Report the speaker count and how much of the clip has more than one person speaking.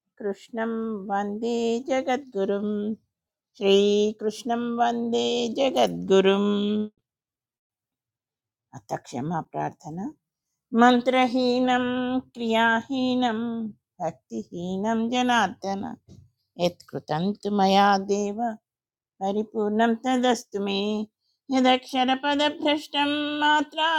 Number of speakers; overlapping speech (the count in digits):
1, no overlap